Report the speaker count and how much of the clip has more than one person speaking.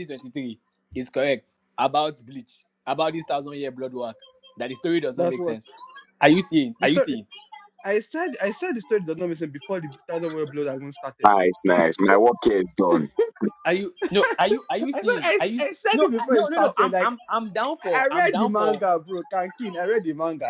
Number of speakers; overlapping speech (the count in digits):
3, about 19%